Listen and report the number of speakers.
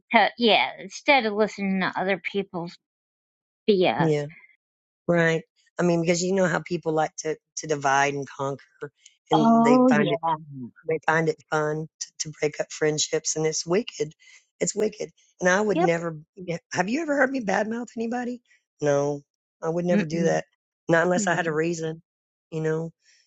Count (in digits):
2